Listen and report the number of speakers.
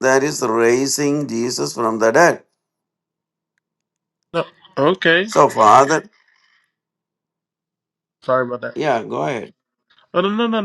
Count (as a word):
two